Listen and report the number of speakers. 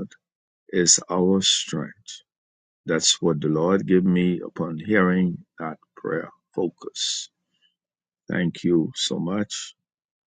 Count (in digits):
1